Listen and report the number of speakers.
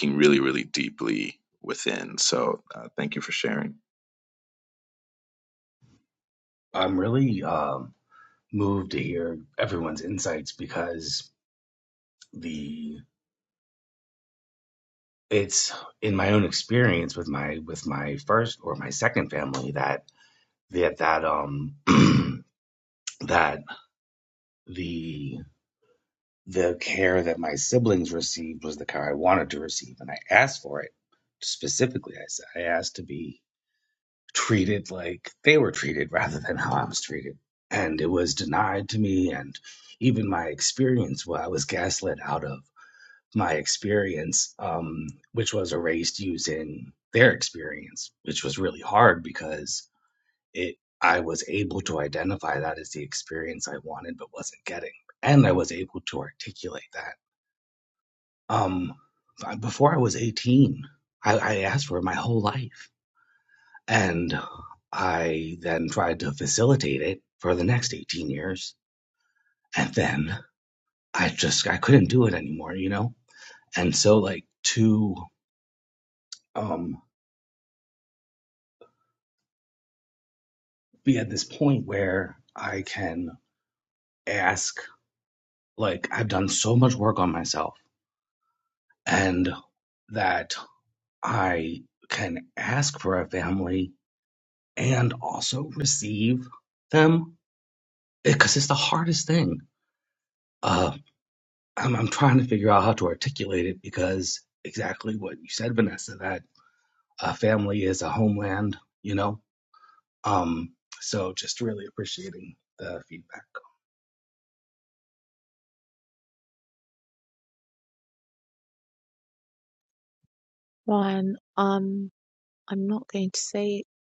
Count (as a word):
three